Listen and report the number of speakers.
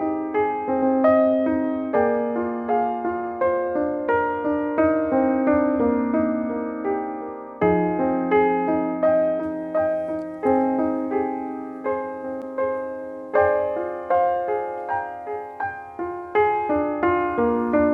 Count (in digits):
0